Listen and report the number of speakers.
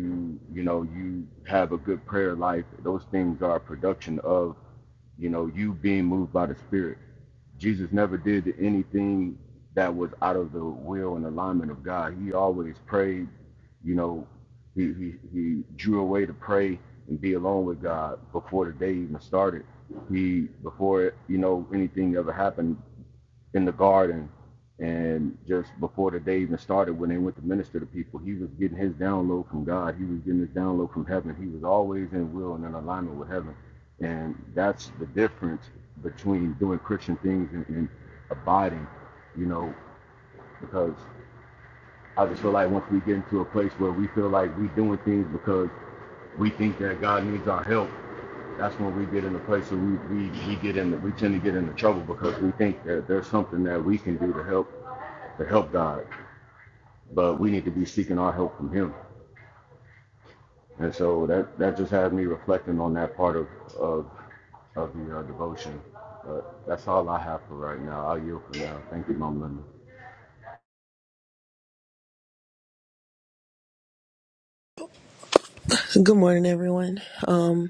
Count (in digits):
2